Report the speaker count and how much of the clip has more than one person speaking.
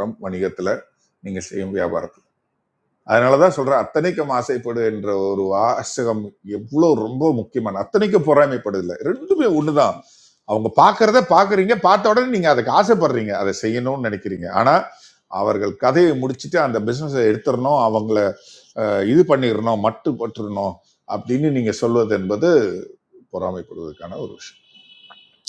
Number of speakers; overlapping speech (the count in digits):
1, no overlap